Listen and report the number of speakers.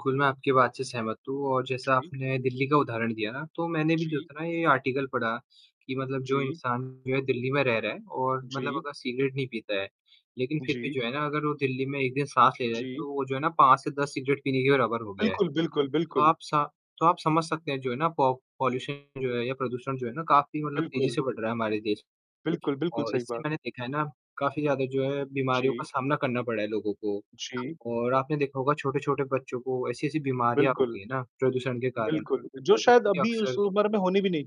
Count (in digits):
2